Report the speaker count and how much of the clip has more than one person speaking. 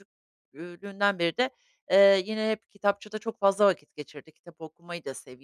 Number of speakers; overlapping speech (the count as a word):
one, no overlap